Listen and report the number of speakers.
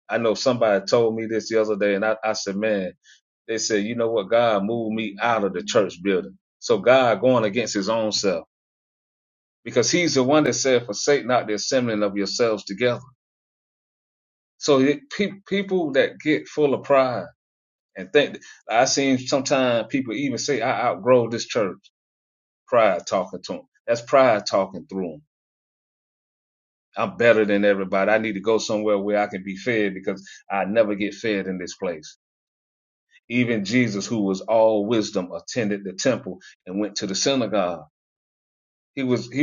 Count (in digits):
1